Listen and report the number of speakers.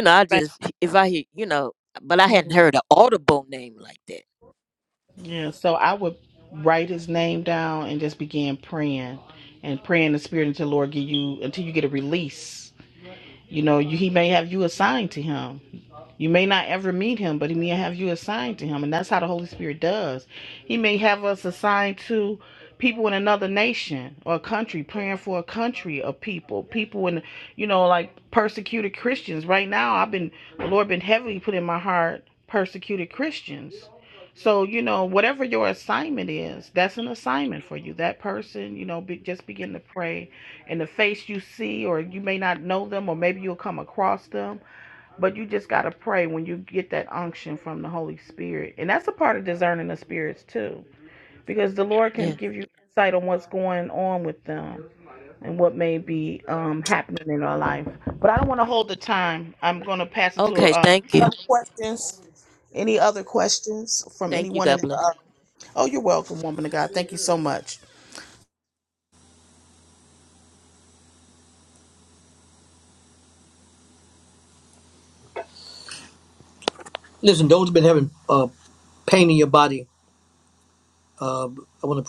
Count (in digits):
3